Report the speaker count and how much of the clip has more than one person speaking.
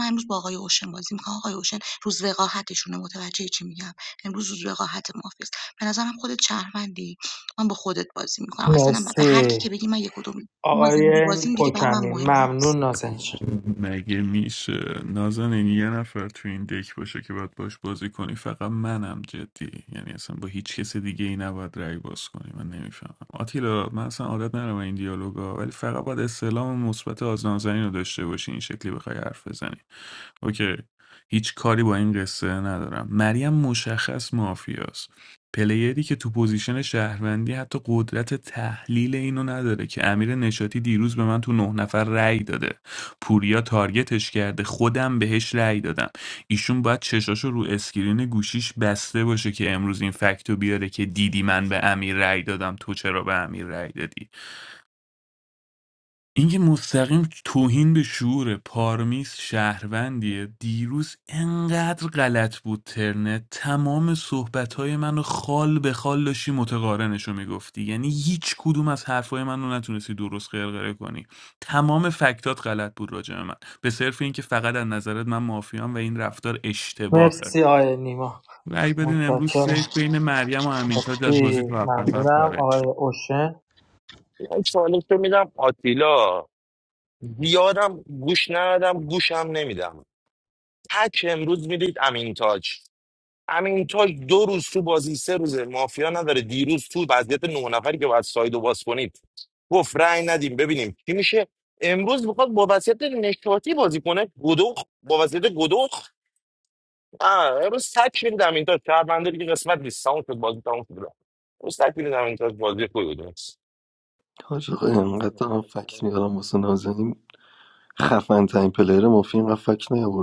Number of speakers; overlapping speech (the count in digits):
5, about 5%